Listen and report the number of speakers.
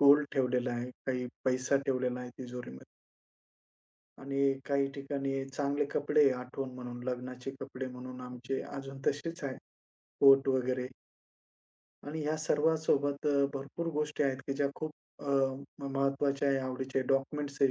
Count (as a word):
one